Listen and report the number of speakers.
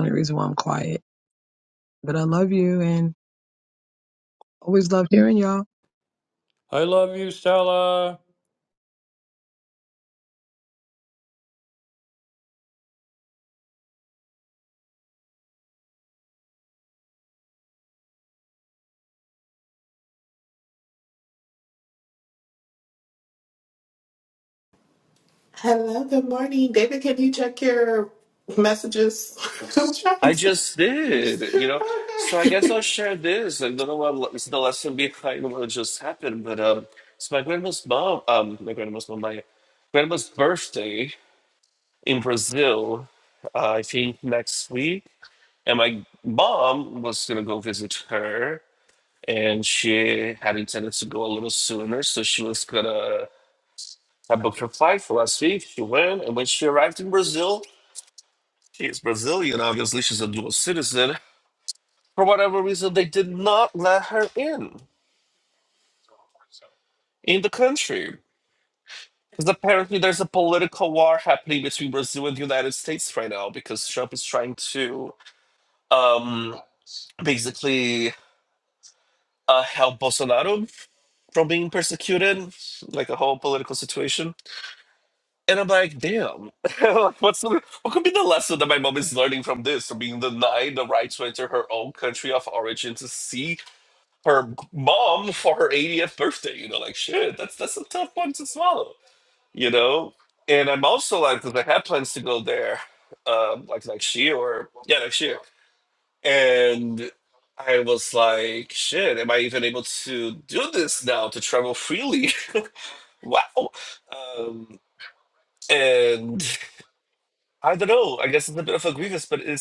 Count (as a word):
four